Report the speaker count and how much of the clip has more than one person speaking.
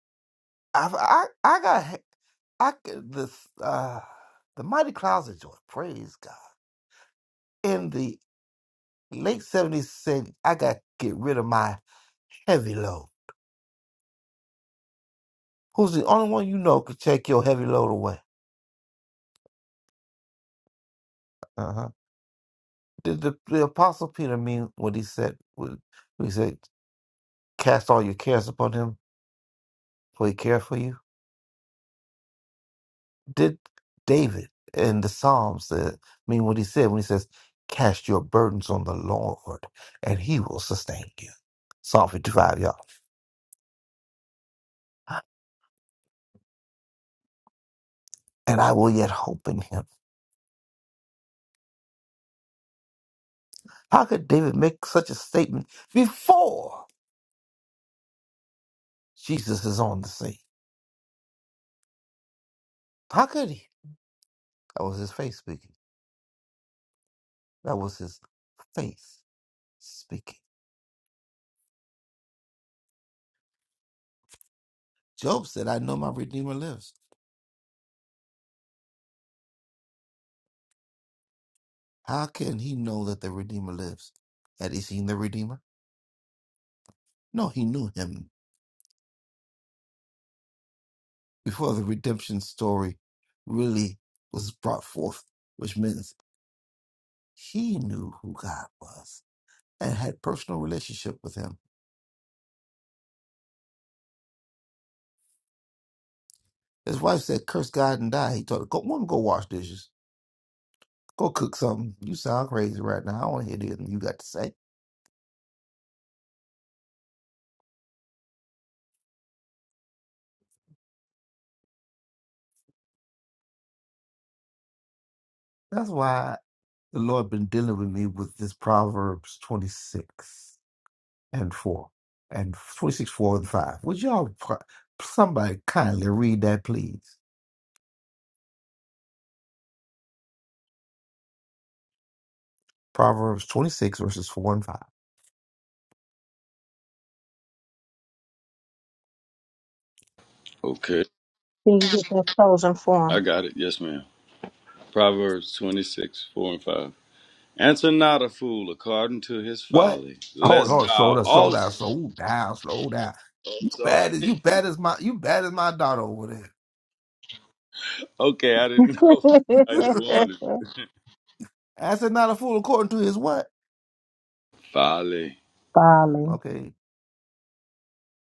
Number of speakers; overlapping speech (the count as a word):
three, about 1%